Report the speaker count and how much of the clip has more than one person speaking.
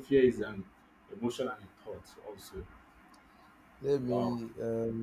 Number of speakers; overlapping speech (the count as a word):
two, about 6%